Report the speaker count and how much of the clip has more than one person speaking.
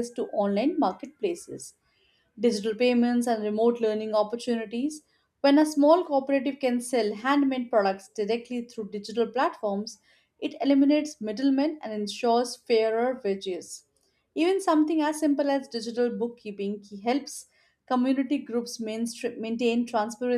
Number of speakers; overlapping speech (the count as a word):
one, no overlap